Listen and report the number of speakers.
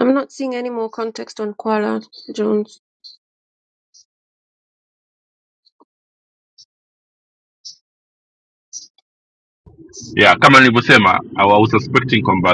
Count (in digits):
2